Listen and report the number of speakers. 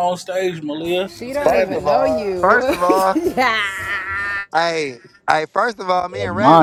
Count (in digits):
3